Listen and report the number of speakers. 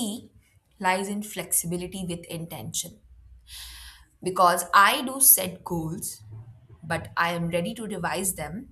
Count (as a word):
one